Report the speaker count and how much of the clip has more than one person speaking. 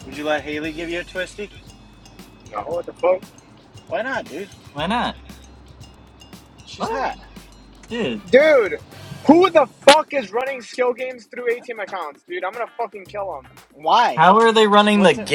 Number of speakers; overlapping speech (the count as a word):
three, about 5%